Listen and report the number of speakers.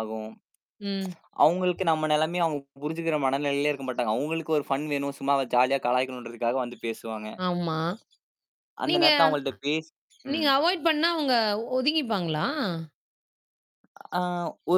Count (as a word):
two